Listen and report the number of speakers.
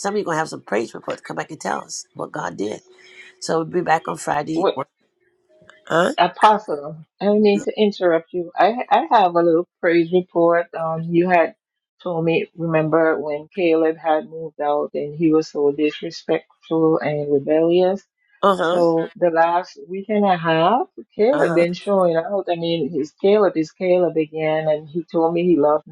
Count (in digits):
2